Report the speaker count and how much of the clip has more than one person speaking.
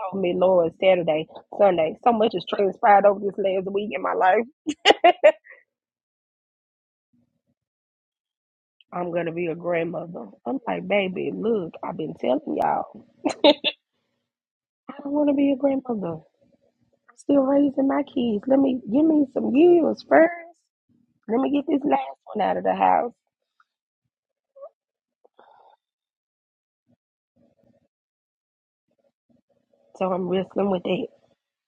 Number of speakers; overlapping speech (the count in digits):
1, no overlap